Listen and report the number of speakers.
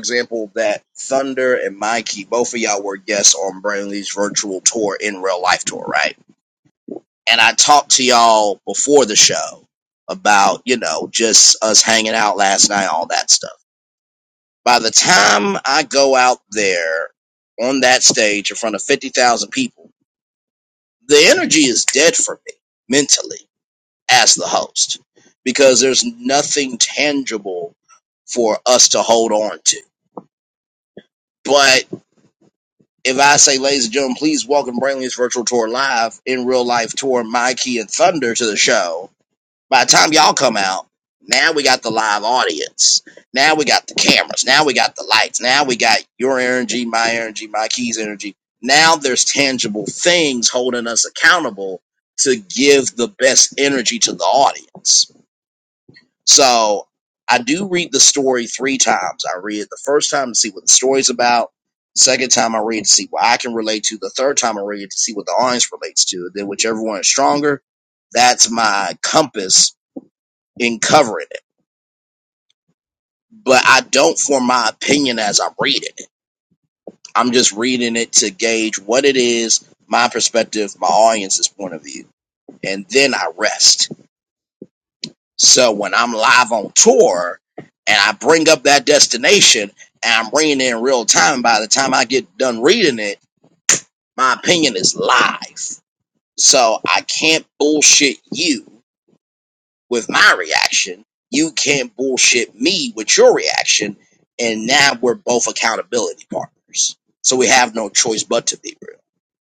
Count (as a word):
one